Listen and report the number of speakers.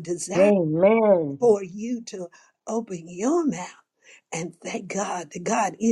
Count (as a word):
two